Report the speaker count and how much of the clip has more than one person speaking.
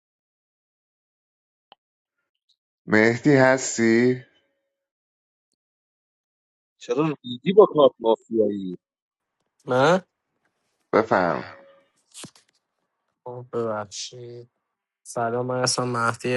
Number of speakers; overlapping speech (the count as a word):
three, no overlap